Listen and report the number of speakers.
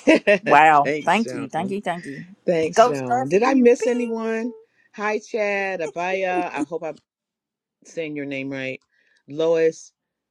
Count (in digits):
2